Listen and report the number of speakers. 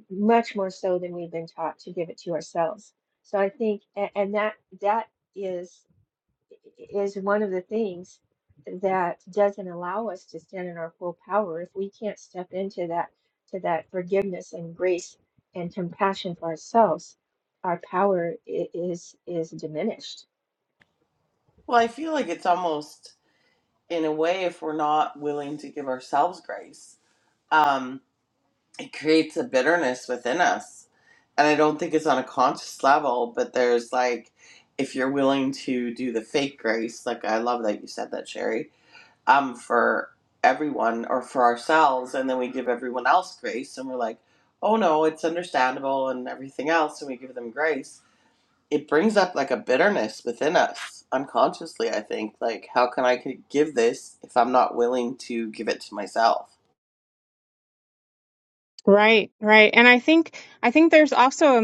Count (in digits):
3